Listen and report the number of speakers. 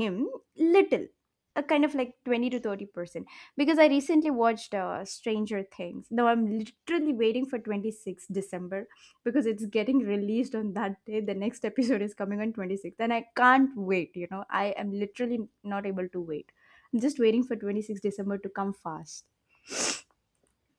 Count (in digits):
1